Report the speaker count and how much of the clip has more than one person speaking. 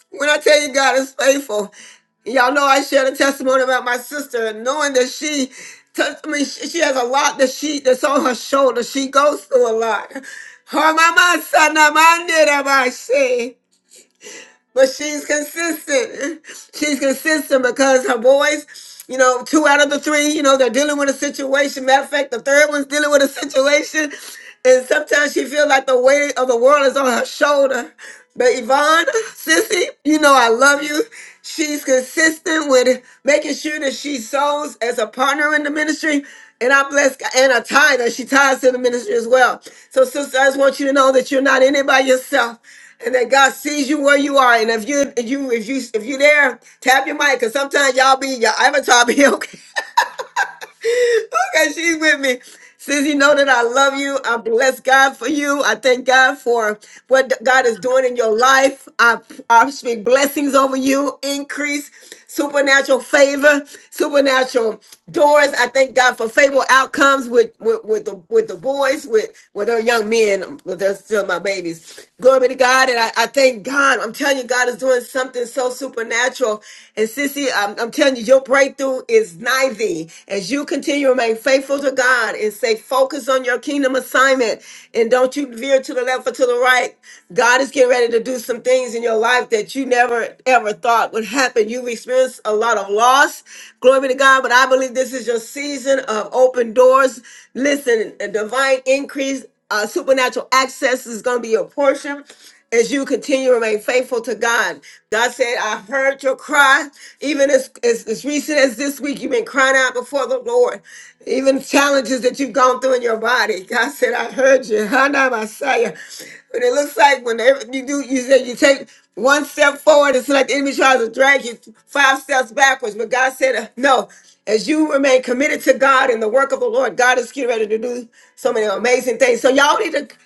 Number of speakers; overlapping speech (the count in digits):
1, no overlap